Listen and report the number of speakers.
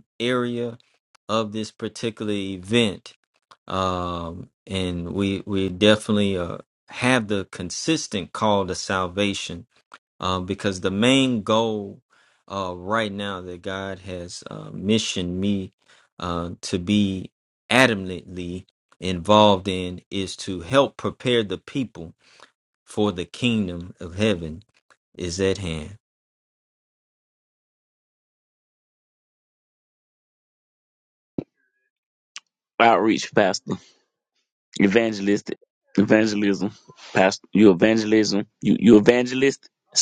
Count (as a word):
two